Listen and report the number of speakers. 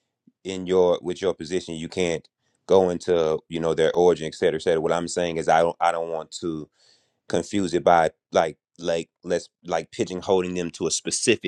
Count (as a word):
one